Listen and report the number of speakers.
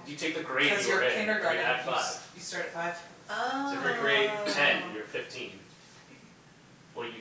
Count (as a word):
three